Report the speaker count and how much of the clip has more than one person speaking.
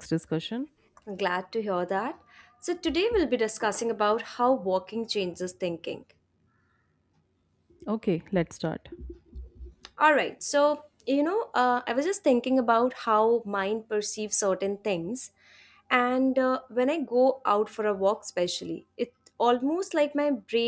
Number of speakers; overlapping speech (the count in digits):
2, no overlap